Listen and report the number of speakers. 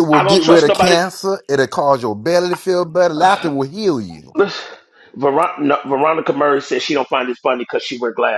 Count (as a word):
two